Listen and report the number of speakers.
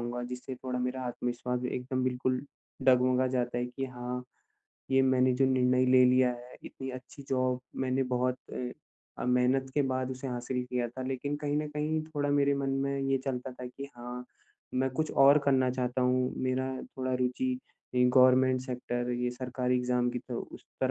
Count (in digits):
1